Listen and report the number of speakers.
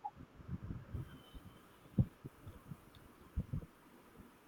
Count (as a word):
zero